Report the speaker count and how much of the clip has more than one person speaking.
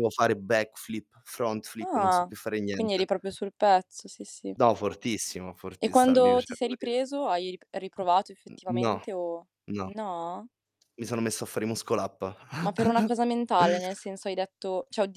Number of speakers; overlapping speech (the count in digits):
2, about 14%